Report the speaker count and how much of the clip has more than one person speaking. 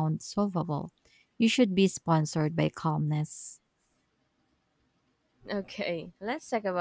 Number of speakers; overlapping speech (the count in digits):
2, no overlap